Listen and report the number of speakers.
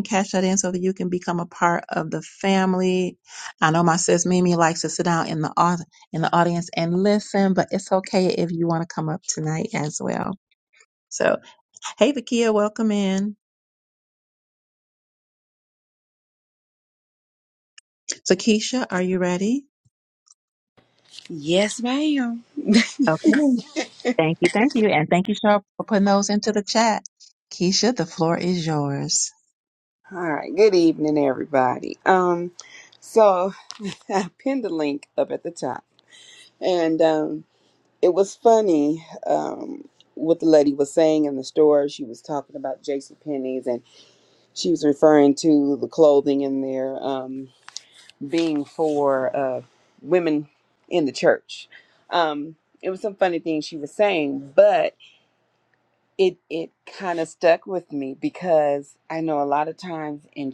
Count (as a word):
two